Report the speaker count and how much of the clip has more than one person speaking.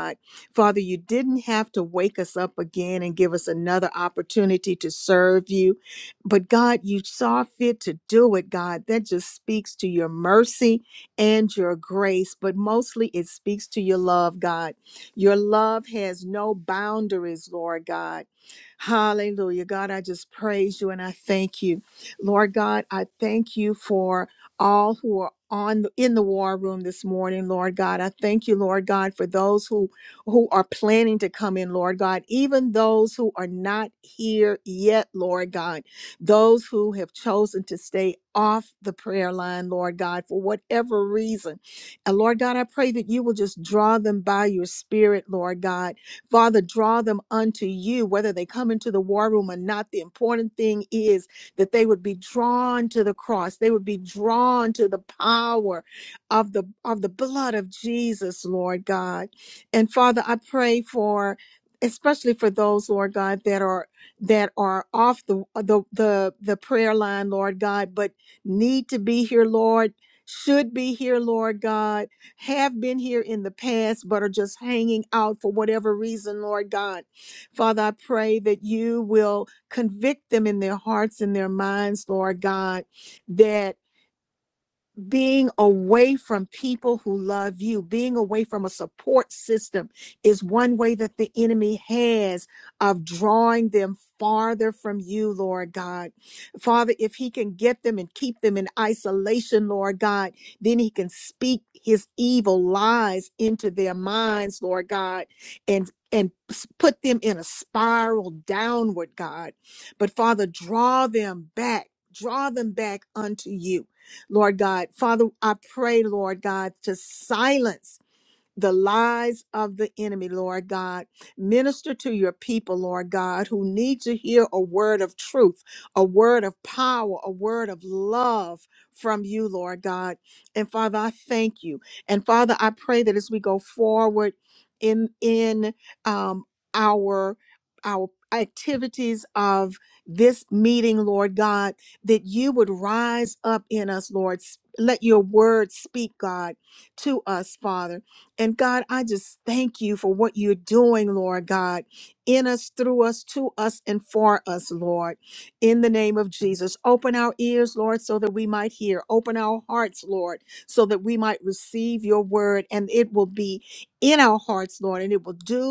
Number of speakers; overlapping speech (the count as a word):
one, no overlap